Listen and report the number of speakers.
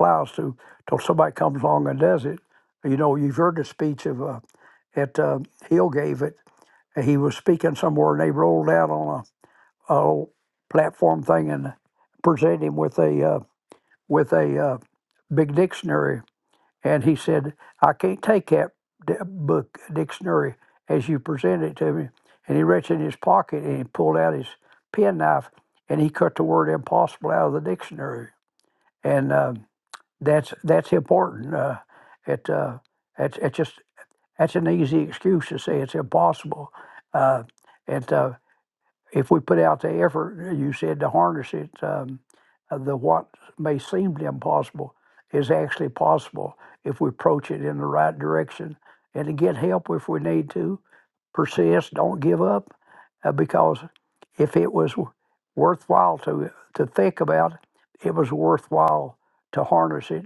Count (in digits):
1